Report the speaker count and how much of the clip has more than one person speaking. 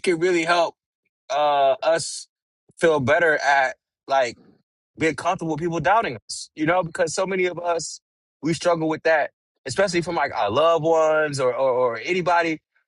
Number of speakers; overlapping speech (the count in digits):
1, no overlap